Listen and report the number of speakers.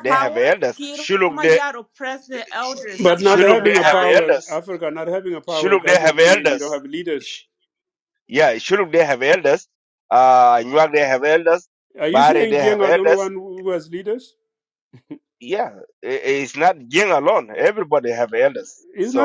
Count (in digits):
3